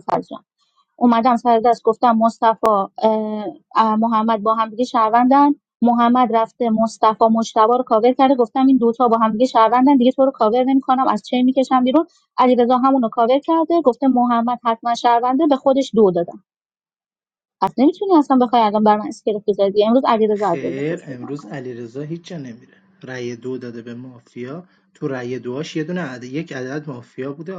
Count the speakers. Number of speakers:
two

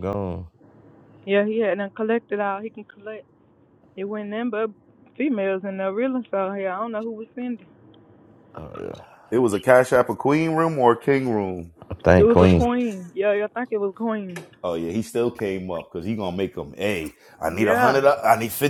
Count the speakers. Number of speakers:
three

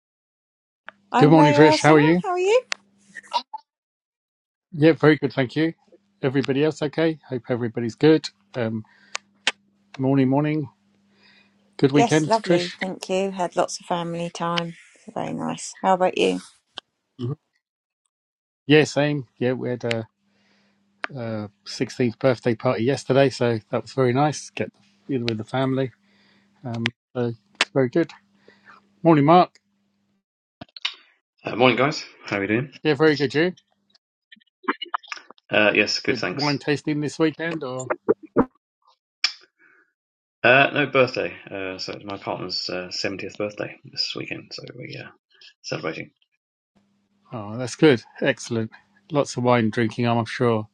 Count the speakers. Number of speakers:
three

